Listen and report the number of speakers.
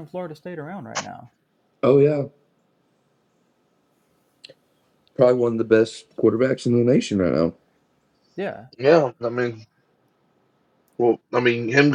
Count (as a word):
three